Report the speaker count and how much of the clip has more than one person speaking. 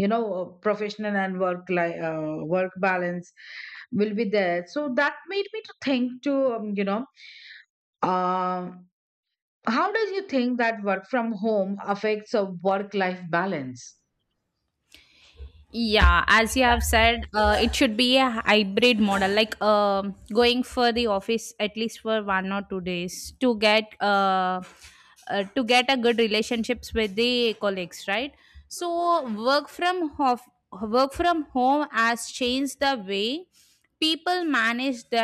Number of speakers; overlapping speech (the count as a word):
two, no overlap